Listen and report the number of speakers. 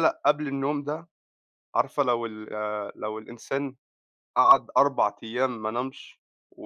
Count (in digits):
1